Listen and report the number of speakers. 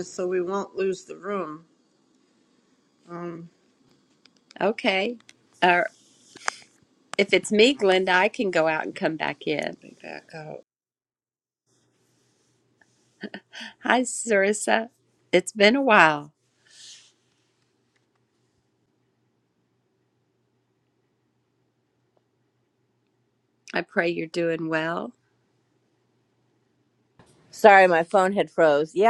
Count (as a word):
three